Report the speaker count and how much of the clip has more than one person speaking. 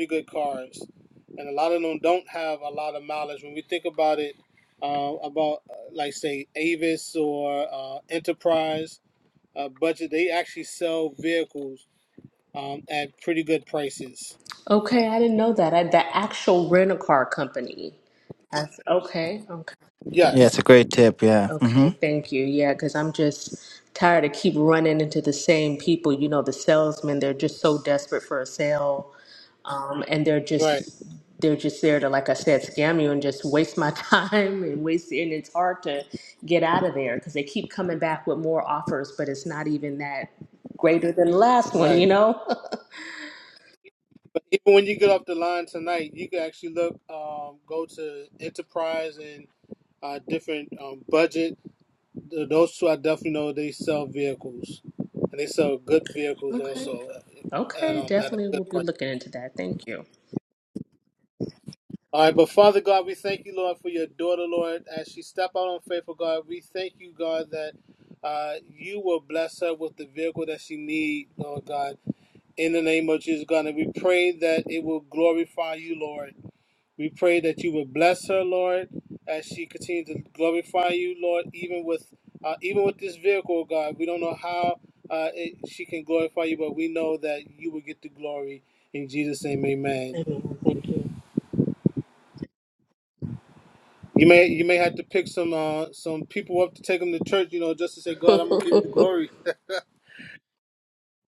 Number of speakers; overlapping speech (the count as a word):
three, about 3%